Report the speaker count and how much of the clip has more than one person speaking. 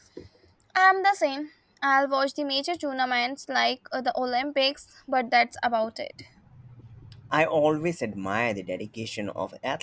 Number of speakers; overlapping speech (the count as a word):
two, no overlap